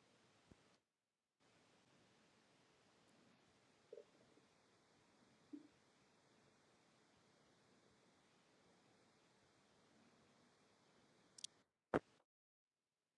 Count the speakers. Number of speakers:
zero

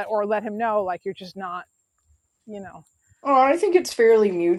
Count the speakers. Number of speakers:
two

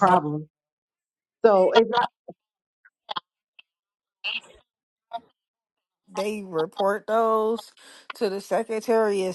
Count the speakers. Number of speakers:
two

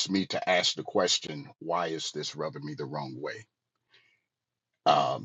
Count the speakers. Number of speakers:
one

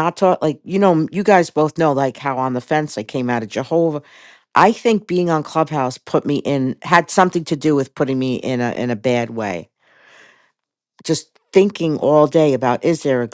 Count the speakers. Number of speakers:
one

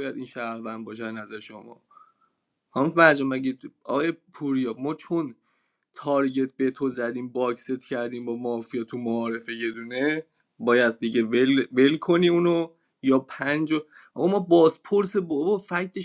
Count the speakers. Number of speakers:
one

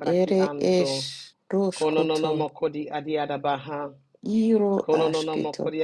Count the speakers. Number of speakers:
two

